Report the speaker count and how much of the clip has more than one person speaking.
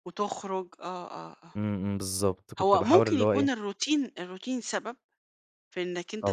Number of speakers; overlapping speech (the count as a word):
two, about 16%